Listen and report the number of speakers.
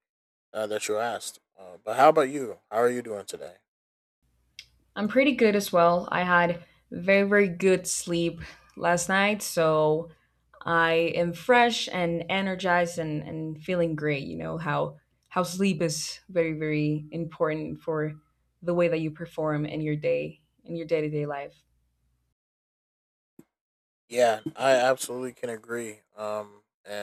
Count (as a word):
two